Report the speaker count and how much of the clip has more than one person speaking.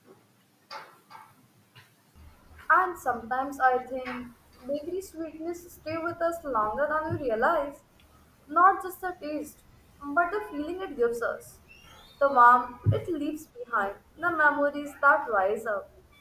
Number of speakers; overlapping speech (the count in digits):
1, no overlap